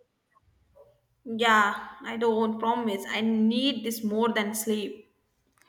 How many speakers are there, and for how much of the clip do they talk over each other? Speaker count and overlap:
one, no overlap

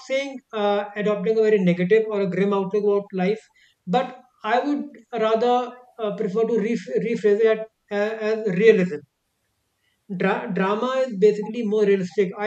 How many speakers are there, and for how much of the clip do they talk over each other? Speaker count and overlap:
one, no overlap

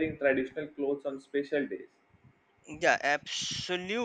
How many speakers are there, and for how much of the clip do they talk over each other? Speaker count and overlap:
two, no overlap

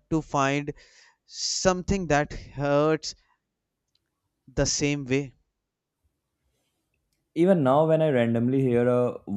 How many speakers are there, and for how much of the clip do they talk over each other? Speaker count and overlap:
two, no overlap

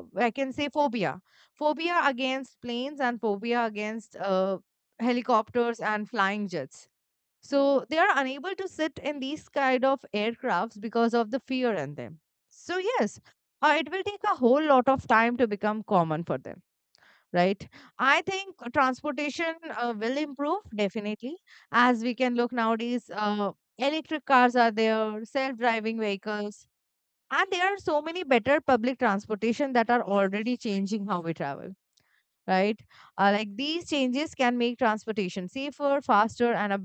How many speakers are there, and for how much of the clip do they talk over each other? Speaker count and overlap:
one, no overlap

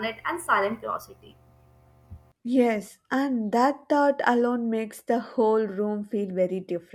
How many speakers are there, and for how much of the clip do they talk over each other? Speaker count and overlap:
two, no overlap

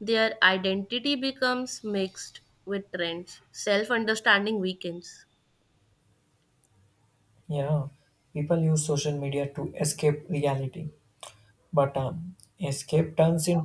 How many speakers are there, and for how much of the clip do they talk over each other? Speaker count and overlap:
two, no overlap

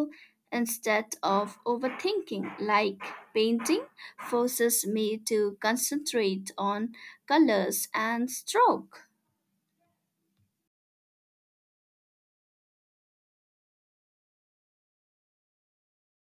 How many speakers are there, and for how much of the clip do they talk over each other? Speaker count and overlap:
one, no overlap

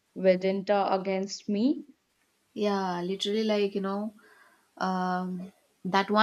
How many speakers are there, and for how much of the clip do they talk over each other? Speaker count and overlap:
two, no overlap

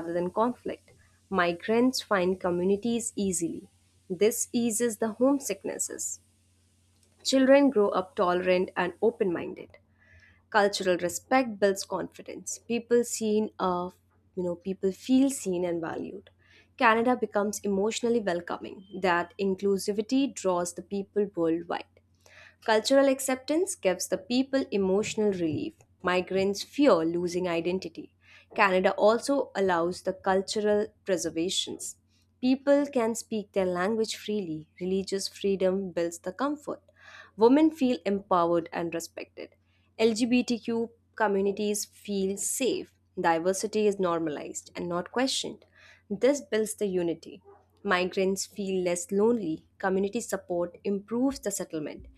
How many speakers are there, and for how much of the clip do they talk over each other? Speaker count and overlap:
one, no overlap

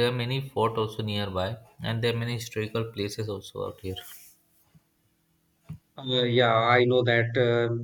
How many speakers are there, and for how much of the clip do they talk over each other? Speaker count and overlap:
two, no overlap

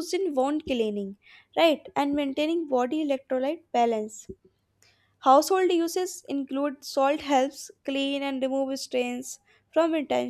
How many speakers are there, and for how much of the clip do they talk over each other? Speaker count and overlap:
one, no overlap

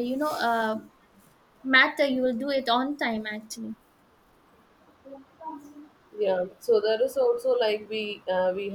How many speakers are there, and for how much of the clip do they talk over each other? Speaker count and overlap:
two, no overlap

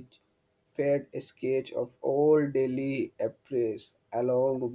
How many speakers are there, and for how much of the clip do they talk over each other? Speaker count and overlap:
one, no overlap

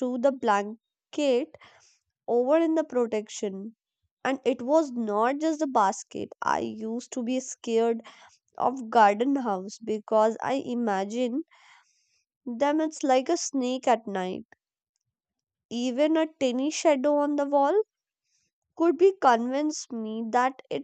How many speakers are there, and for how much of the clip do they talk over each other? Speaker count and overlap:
one, no overlap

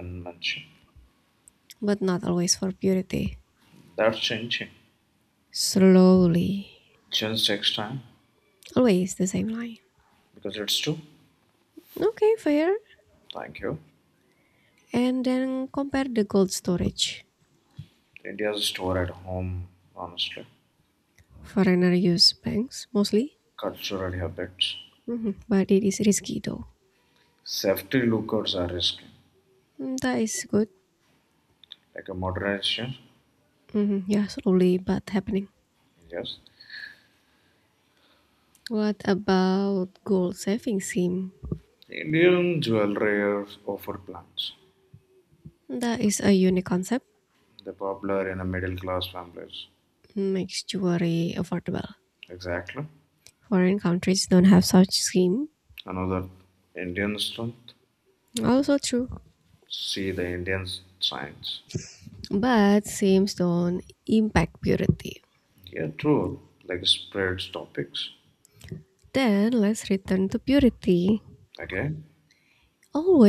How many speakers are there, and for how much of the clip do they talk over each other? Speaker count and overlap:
two, no overlap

